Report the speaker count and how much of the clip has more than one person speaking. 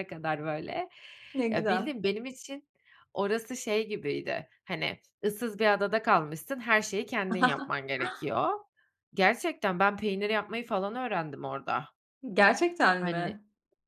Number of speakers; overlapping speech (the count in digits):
2, about 5%